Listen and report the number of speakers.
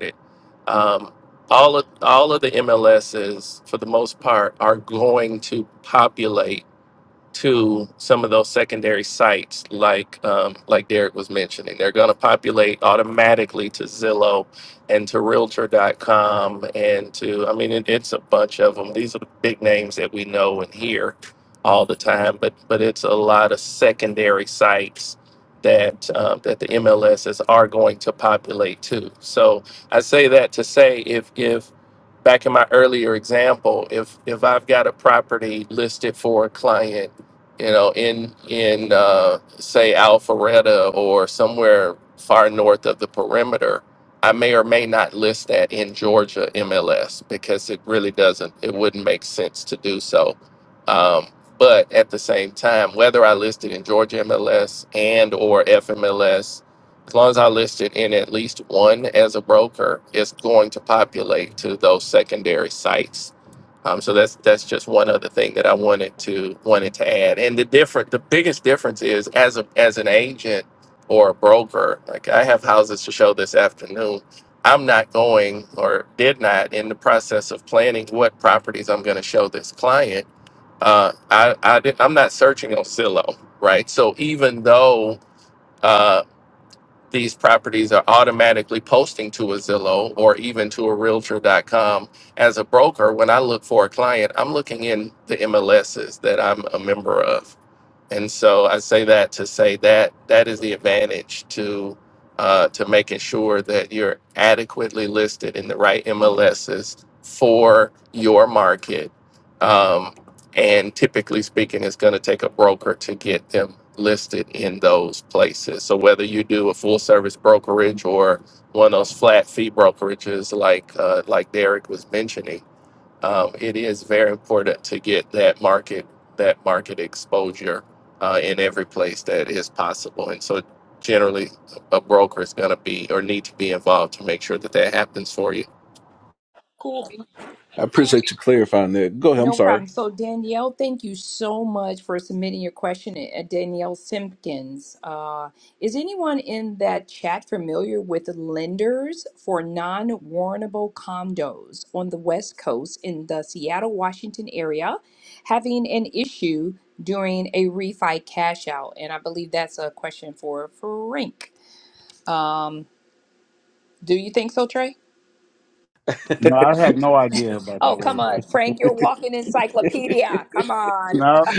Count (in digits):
4